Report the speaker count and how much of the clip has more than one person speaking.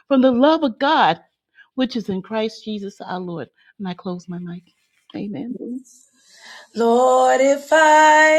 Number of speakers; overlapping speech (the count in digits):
2, no overlap